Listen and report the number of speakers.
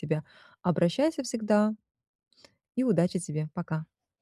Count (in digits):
1